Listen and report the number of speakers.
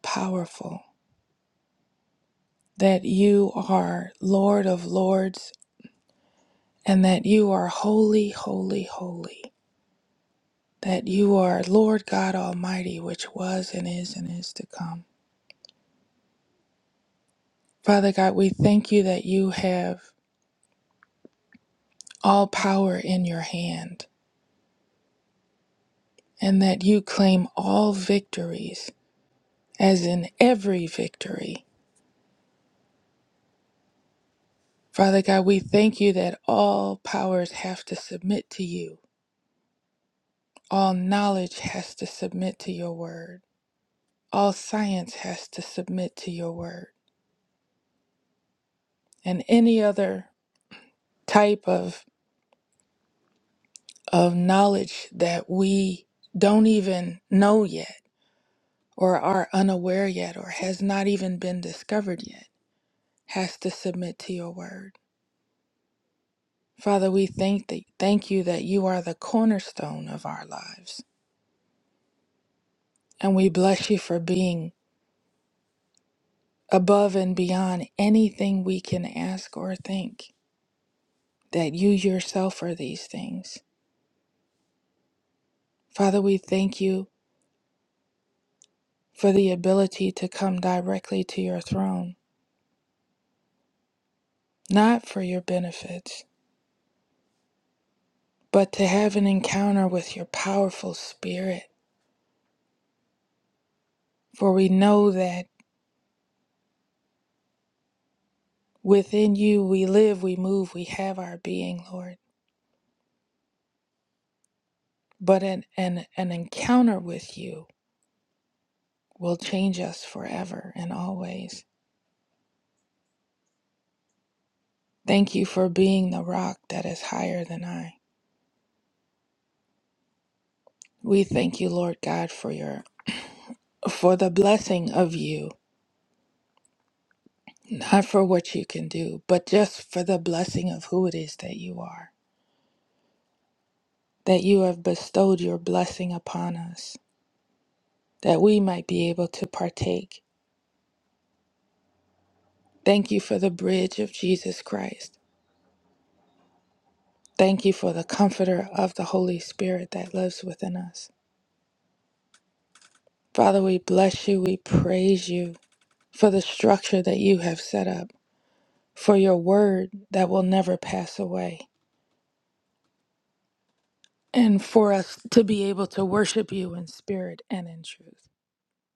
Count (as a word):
one